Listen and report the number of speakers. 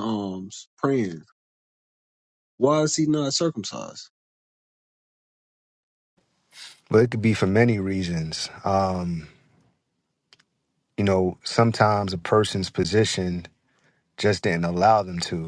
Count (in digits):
2